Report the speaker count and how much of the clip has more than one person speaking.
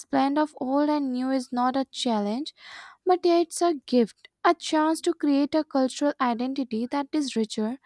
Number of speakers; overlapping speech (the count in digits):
1, no overlap